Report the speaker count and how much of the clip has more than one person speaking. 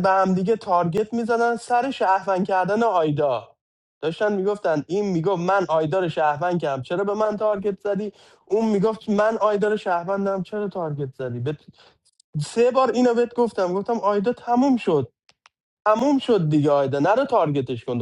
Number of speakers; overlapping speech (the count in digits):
1, no overlap